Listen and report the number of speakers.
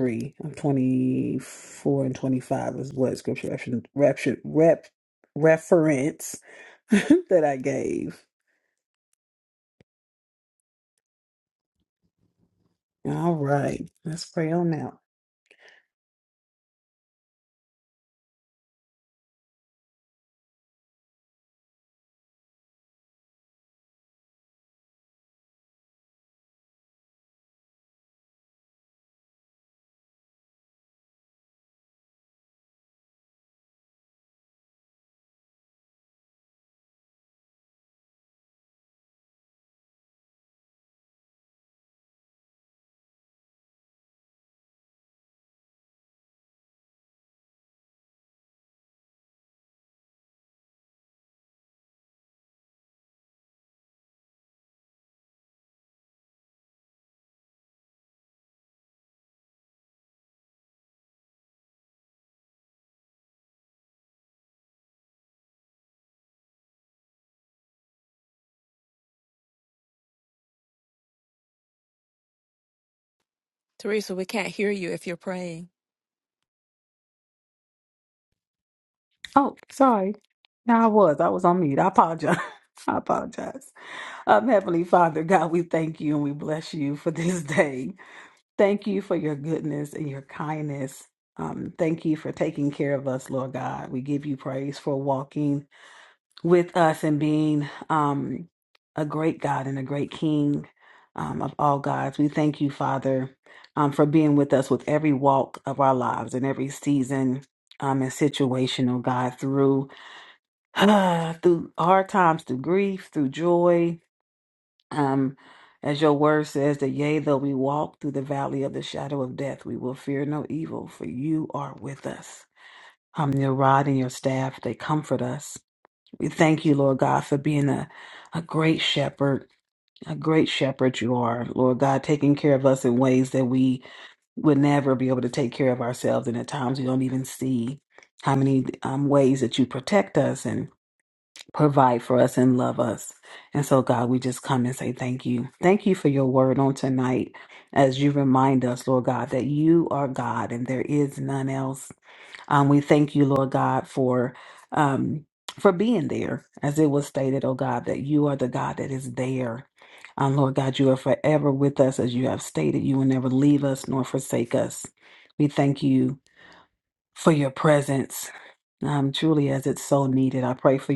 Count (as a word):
two